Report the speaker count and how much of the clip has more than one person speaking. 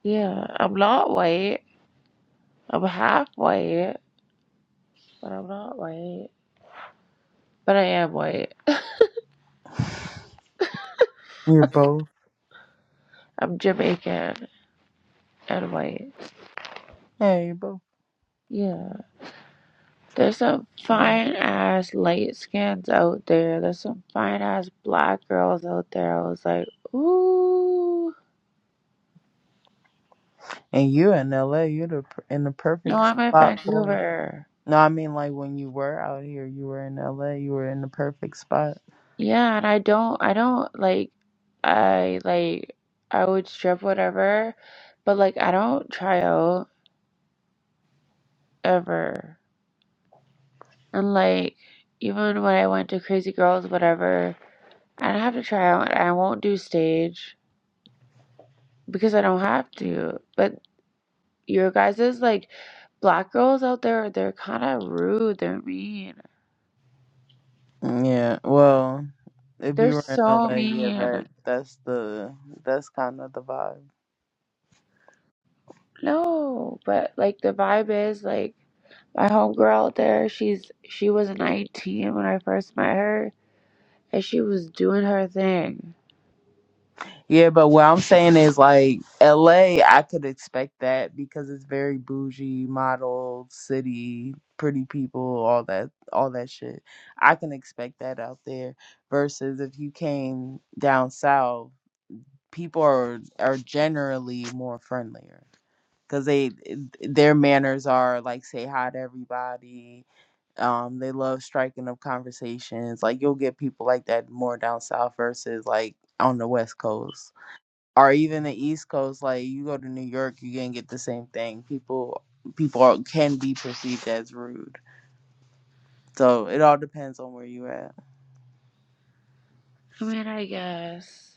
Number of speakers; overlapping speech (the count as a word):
two, about 2%